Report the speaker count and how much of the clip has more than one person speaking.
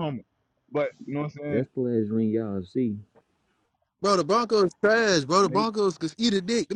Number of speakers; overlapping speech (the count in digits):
3, about 6%